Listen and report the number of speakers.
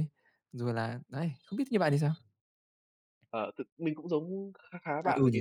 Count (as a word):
two